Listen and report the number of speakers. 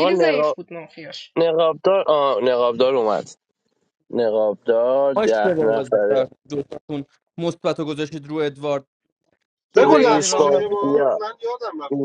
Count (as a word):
four